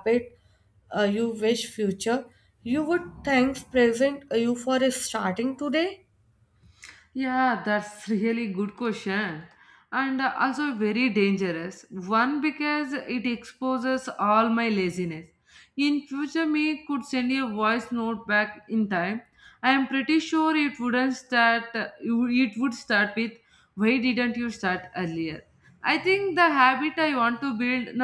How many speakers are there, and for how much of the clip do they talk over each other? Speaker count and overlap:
two, no overlap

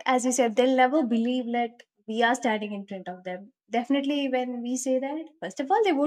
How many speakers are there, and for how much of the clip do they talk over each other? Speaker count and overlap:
one, no overlap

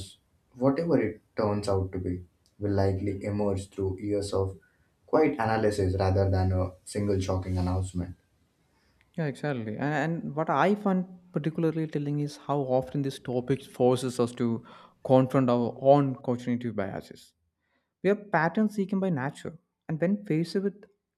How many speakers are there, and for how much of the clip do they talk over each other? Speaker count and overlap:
two, no overlap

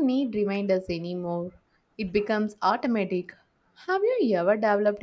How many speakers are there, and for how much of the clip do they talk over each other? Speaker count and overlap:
one, no overlap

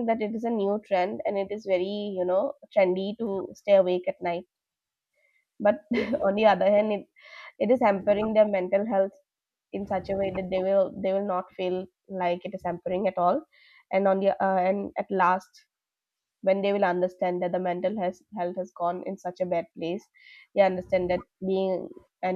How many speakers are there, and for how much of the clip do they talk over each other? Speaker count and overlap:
one, no overlap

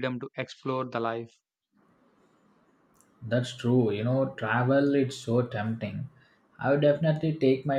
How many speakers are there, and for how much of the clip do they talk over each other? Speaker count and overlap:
two, no overlap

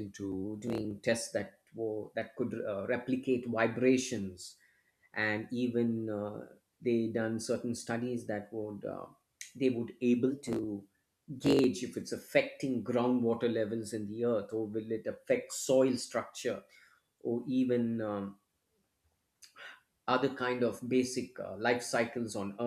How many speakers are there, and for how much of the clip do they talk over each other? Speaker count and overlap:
one, no overlap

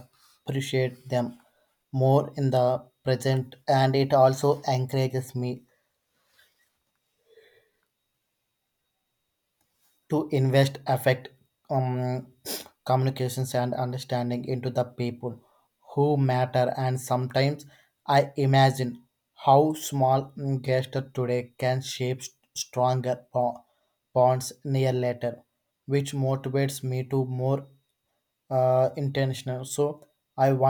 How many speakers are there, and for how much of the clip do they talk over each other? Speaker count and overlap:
one, no overlap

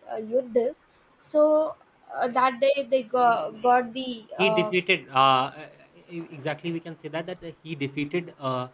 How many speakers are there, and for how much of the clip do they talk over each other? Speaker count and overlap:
two, about 8%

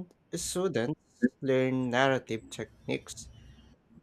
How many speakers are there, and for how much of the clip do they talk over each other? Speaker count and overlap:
one, no overlap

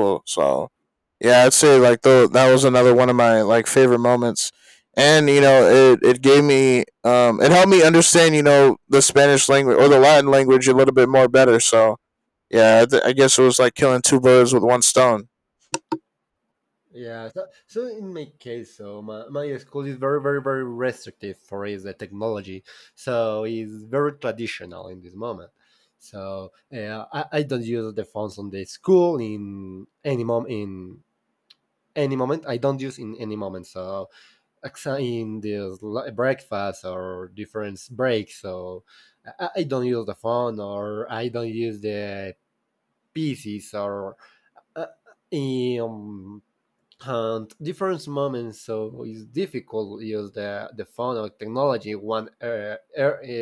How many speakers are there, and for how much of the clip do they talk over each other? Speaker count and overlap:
two, no overlap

